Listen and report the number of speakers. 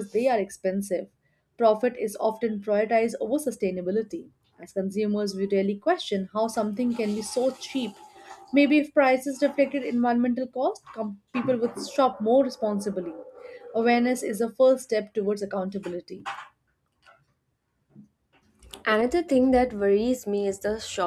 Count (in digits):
2